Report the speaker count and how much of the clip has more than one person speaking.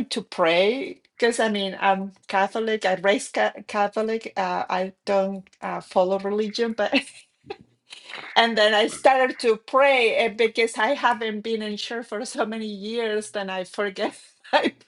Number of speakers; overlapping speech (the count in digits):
1, no overlap